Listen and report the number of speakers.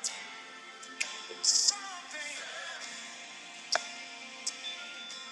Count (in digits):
0